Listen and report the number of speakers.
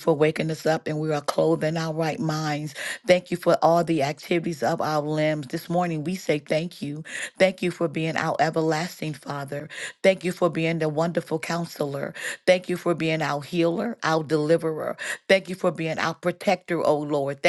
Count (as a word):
one